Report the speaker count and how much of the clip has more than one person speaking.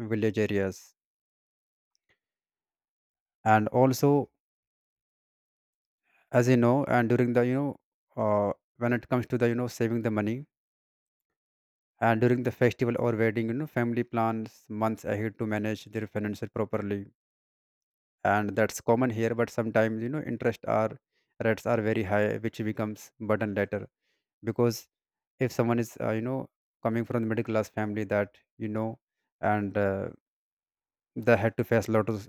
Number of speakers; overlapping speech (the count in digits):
1, no overlap